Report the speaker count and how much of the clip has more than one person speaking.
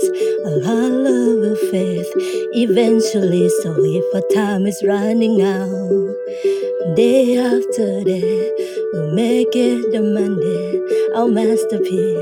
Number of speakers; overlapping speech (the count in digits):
1, no overlap